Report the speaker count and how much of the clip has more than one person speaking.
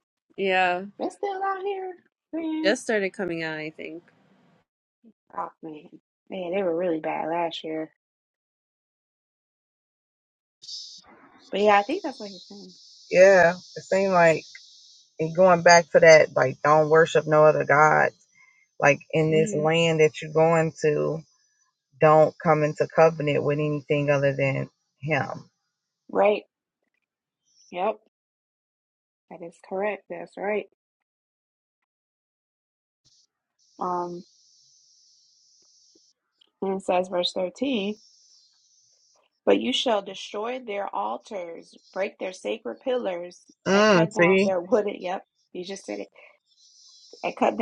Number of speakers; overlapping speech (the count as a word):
three, about 3%